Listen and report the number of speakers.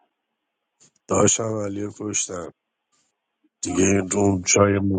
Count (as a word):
one